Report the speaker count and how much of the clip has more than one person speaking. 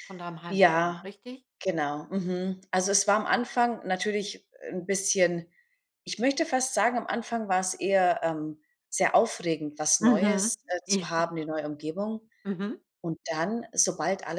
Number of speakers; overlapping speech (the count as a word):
two, about 9%